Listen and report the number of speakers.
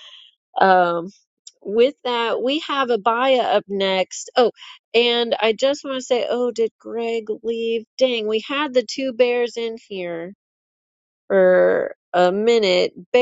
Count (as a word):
one